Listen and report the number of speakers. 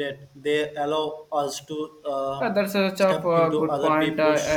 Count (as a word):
two